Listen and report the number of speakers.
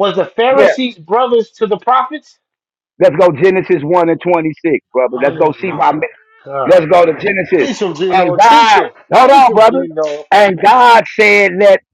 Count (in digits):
3